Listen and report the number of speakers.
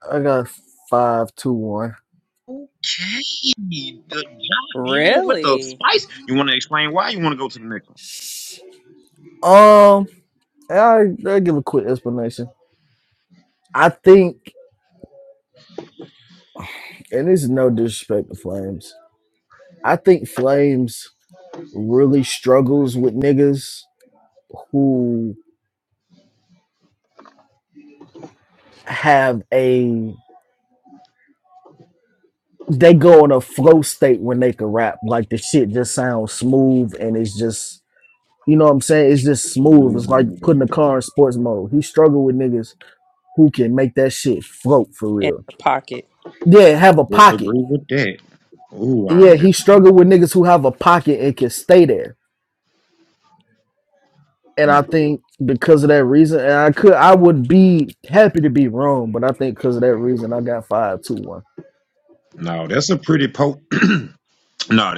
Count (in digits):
3